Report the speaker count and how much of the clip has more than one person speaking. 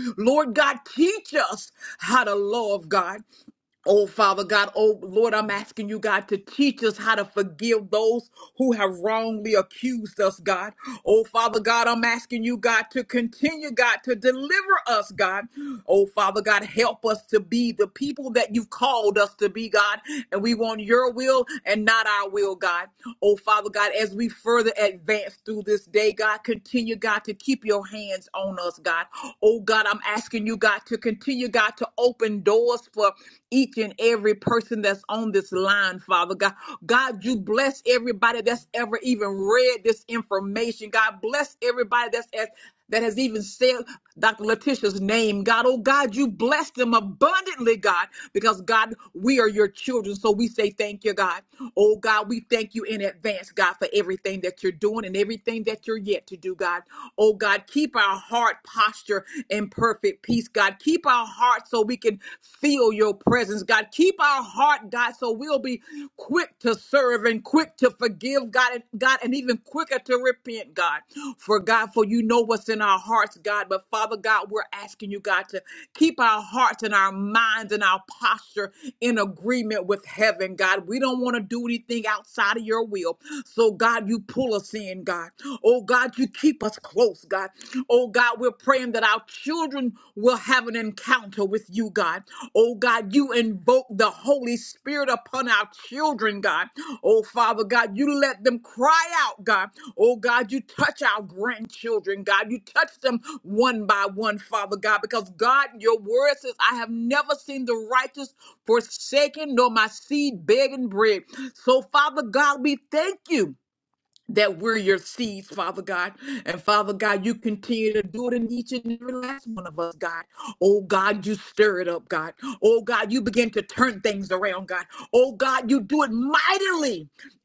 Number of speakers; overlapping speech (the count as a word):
one, no overlap